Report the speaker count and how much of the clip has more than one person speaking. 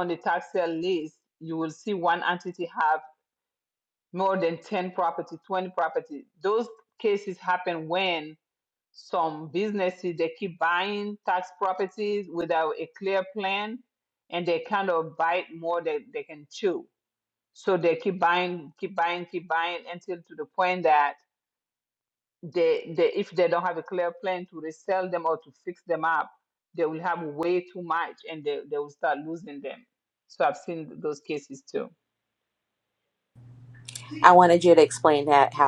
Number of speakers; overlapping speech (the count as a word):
two, no overlap